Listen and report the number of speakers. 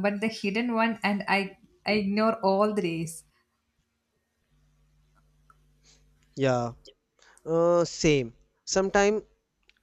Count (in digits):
2